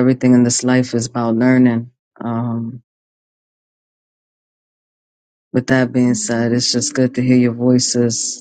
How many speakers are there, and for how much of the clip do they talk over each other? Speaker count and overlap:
one, no overlap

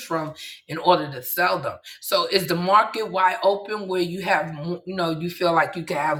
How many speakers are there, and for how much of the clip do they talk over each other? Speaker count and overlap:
one, no overlap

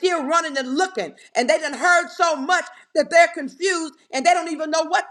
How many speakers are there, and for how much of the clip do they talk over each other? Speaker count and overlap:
one, no overlap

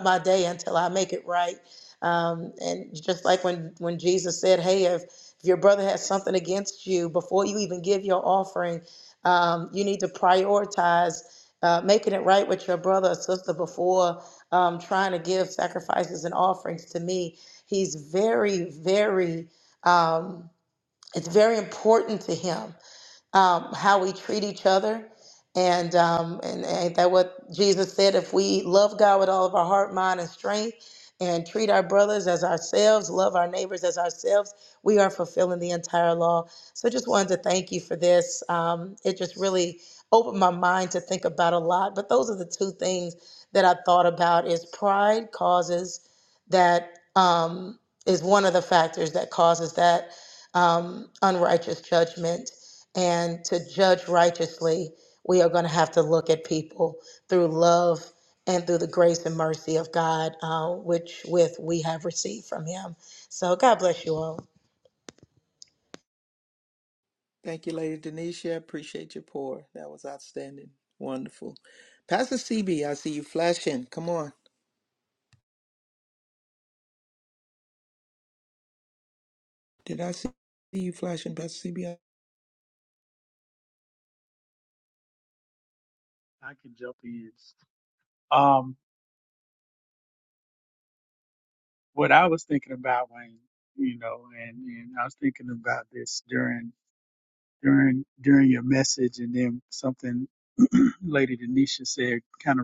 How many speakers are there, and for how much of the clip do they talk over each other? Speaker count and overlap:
three, no overlap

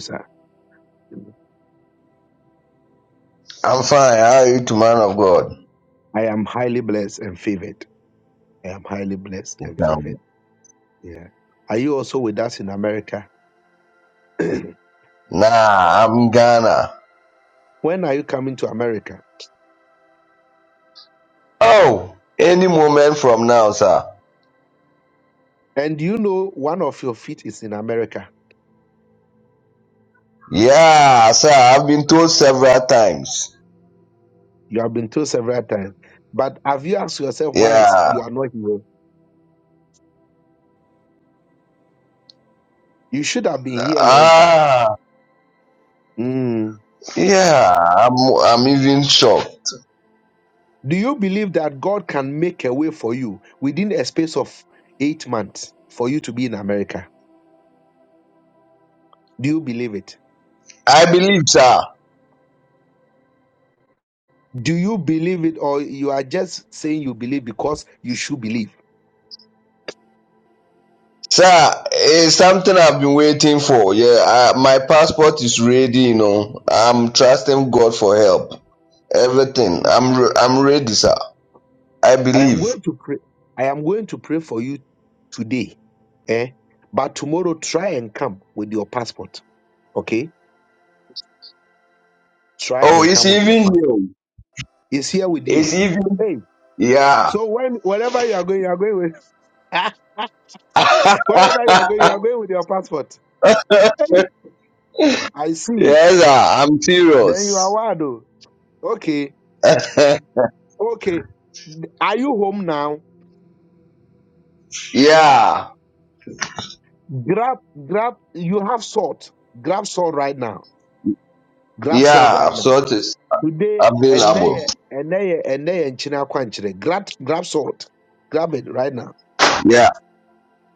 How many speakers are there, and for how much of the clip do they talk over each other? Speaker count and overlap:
two, about 4%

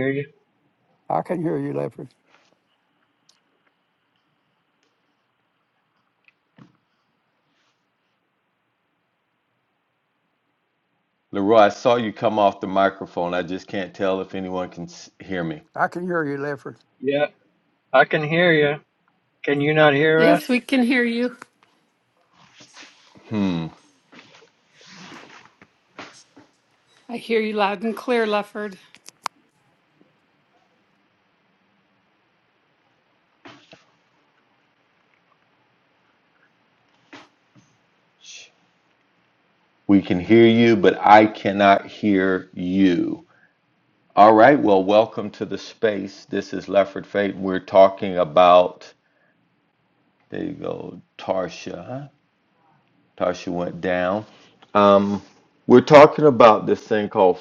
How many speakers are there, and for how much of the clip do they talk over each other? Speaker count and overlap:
four, about 1%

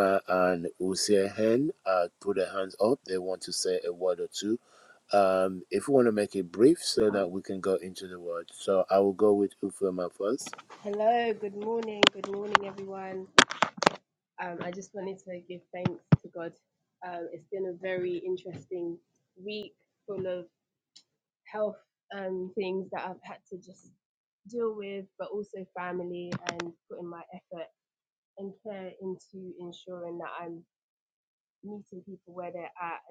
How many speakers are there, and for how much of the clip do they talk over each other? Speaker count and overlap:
two, no overlap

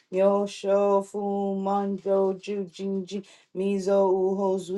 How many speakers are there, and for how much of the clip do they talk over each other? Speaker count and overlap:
one, no overlap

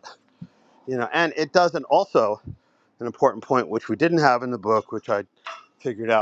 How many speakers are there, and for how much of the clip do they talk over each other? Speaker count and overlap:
one, no overlap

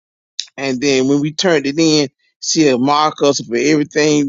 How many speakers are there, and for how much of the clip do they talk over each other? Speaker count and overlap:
one, no overlap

